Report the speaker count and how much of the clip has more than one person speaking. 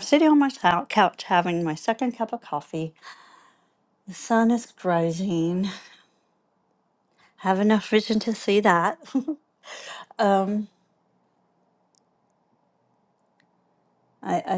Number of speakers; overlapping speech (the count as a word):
one, no overlap